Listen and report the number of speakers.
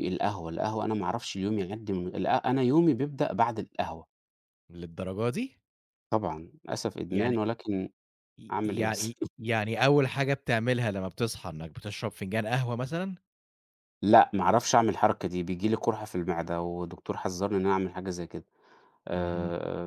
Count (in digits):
2